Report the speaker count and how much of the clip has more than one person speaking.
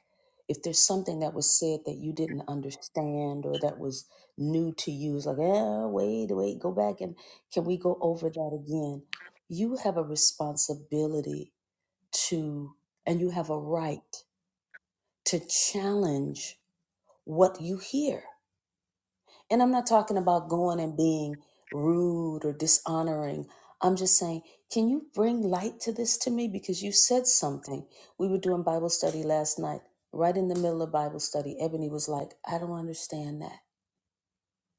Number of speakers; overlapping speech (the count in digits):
1, no overlap